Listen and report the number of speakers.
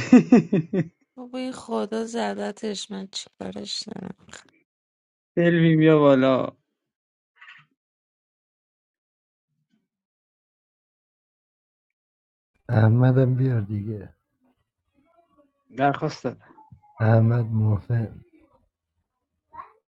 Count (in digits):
3